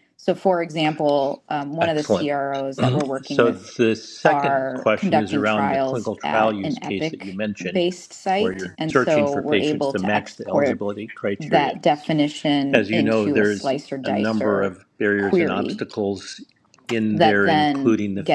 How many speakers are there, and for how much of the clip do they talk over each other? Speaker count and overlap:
2, about 61%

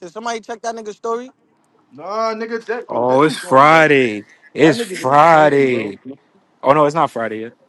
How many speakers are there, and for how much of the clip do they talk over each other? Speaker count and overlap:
3, about 29%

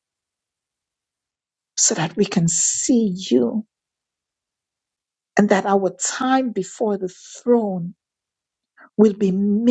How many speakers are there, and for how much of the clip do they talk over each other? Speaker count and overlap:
1, no overlap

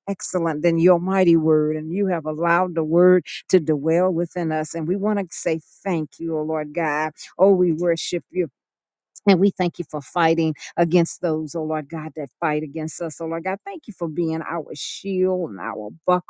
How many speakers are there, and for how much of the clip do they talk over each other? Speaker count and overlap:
1, no overlap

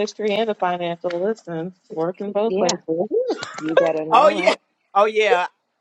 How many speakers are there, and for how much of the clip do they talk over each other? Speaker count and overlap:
3, about 13%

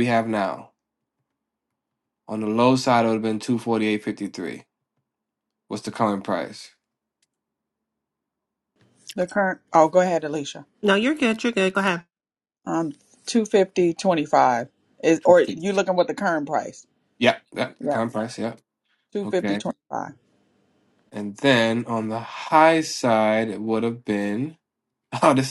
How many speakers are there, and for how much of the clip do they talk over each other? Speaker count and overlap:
3, about 3%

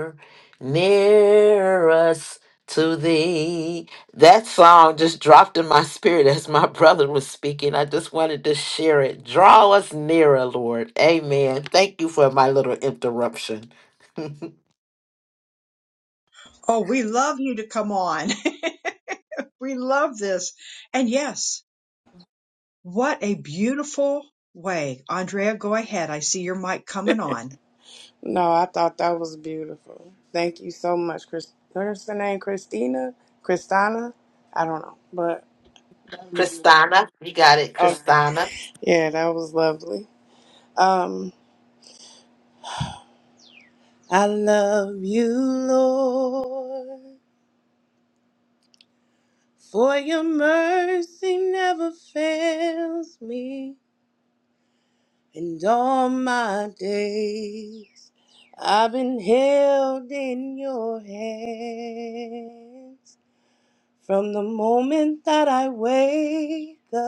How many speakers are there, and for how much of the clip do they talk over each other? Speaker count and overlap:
3, about 1%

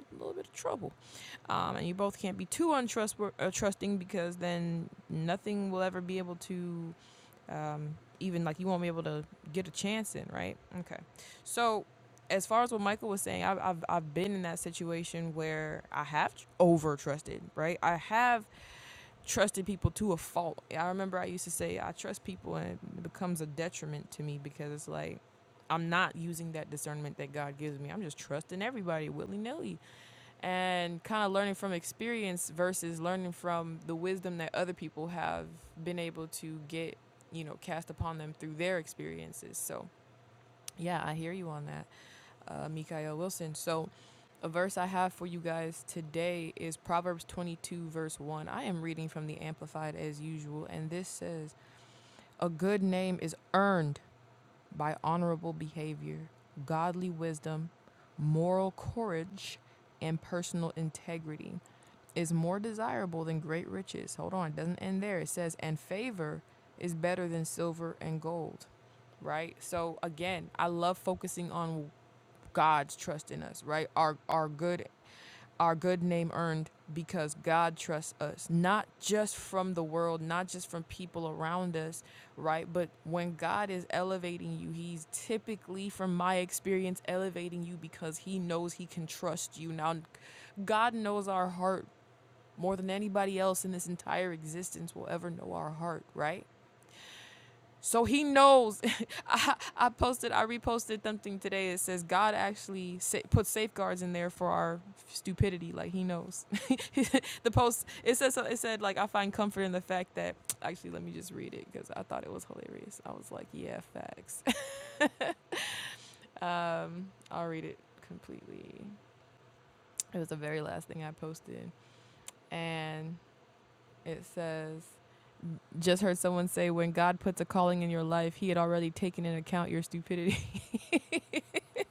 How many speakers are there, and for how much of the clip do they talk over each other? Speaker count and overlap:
1, no overlap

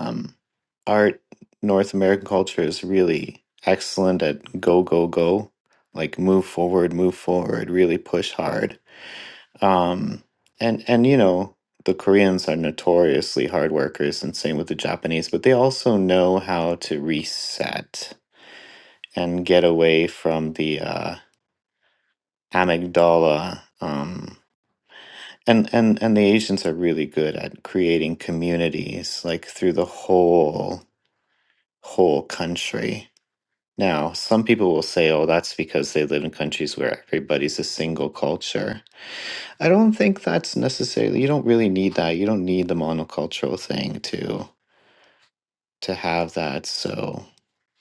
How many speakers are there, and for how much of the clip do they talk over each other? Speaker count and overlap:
1, no overlap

